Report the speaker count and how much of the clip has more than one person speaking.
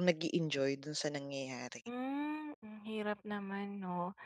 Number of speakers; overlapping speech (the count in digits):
2, under 1%